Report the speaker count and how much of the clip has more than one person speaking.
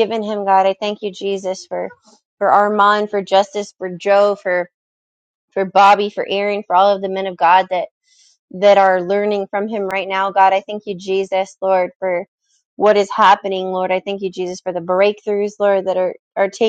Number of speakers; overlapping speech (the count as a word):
one, no overlap